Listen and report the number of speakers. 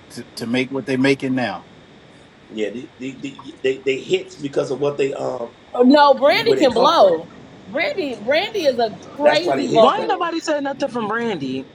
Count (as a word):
four